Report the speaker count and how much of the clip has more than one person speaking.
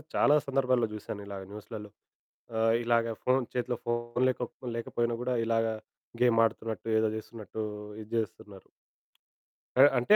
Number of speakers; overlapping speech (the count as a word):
one, no overlap